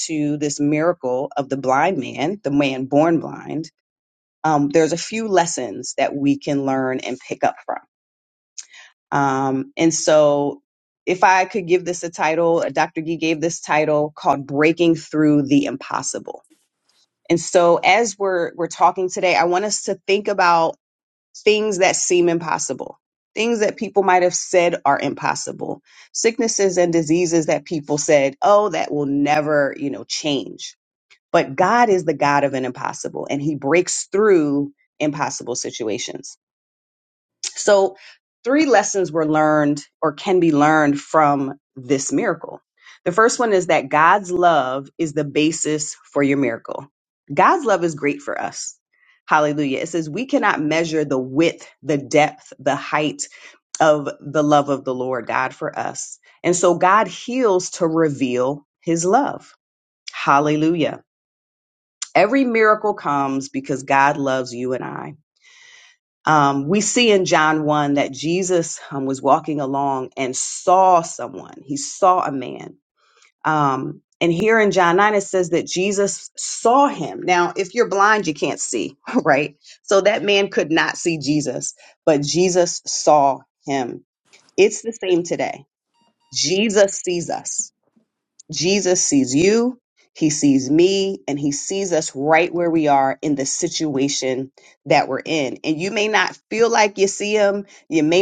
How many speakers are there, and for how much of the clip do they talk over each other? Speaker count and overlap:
1, no overlap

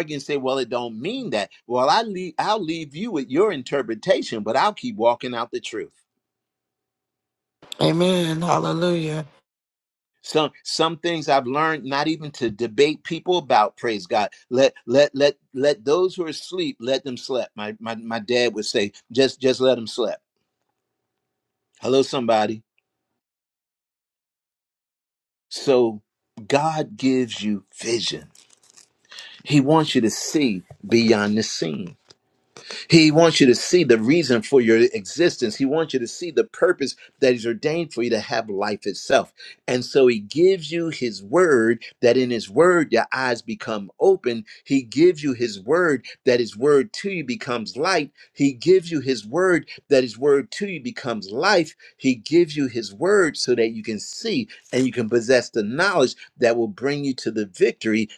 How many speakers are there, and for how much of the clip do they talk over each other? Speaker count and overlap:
2, no overlap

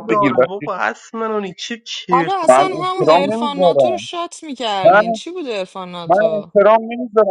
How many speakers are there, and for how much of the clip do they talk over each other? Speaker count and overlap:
3, about 43%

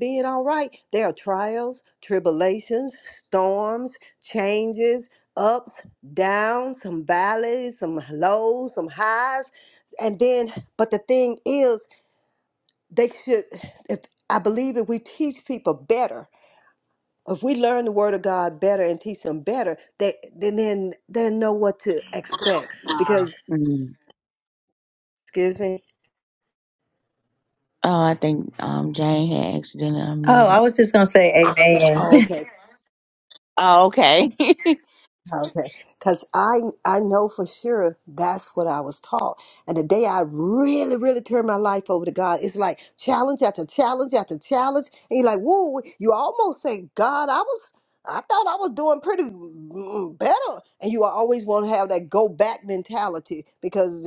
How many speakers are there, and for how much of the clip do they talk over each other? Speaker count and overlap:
3, about 1%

